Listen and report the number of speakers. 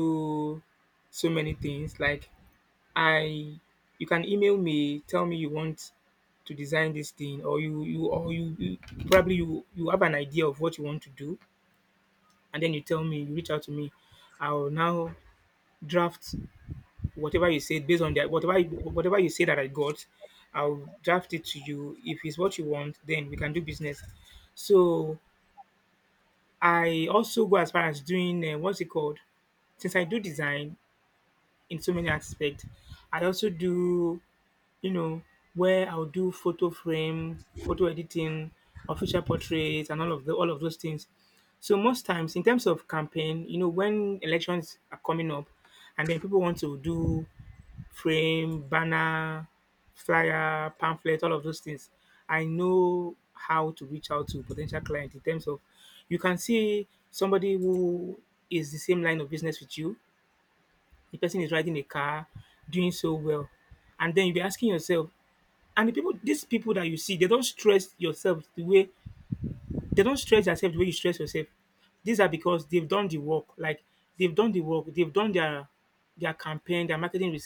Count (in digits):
1